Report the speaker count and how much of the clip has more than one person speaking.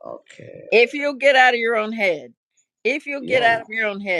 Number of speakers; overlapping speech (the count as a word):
two, about 11%